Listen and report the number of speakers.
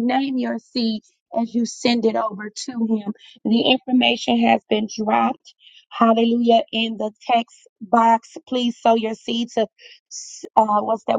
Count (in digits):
1